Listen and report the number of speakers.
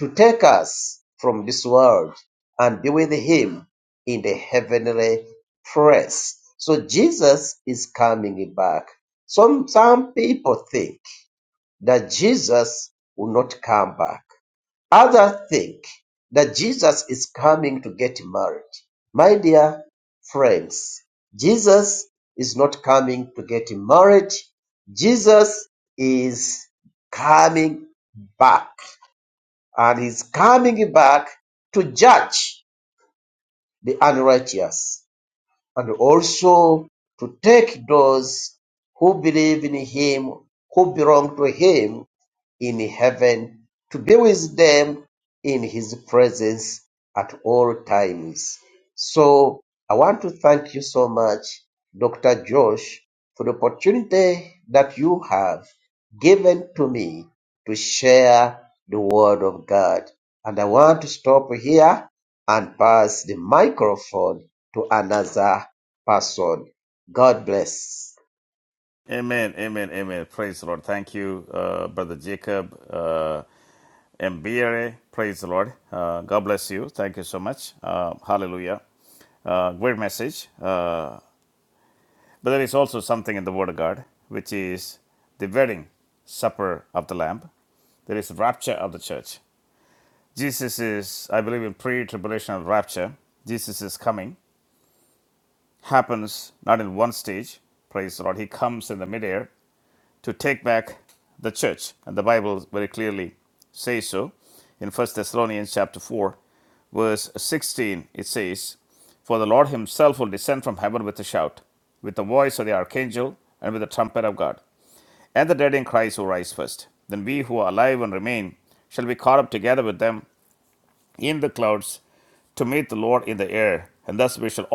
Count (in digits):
2